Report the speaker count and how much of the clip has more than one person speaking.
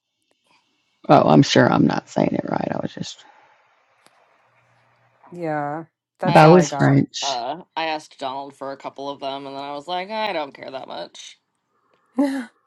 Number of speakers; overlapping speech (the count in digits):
3, about 6%